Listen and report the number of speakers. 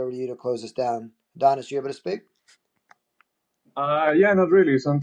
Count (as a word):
two